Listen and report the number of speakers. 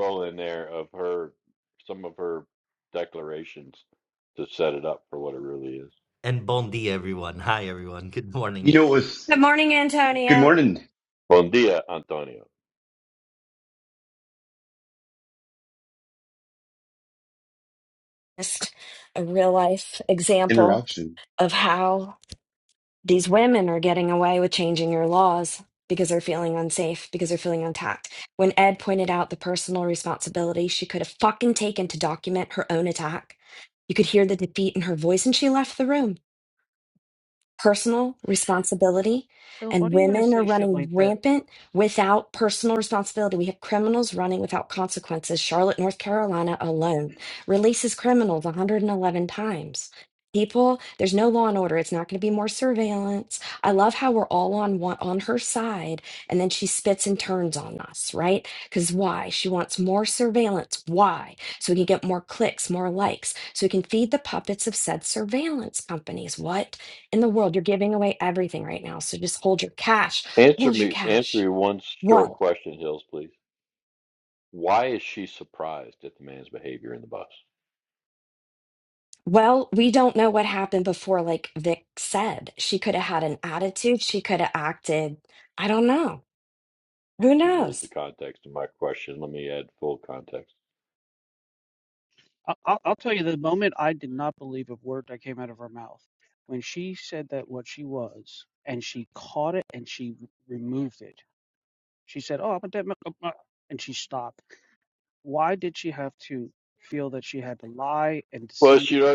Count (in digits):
5